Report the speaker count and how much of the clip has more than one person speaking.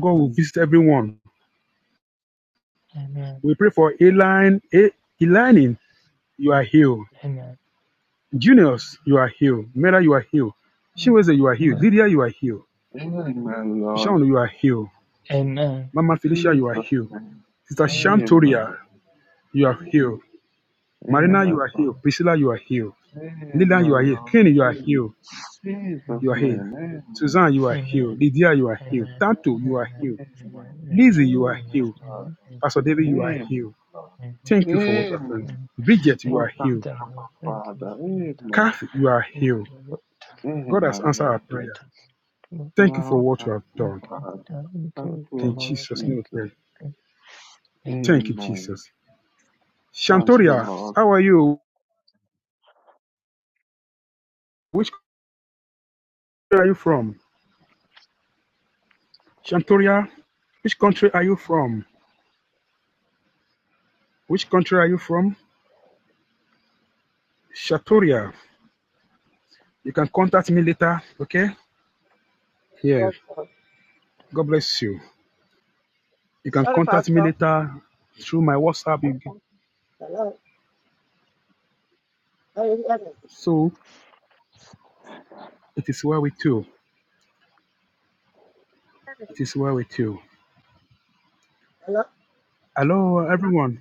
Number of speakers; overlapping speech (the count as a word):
four, about 16%